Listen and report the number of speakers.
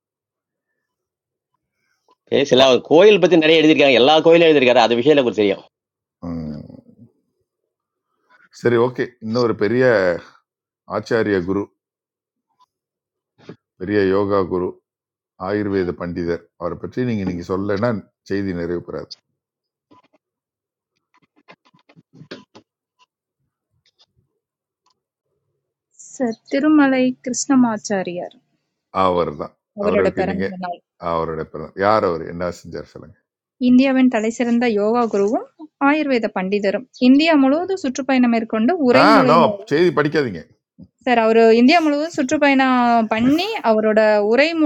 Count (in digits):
3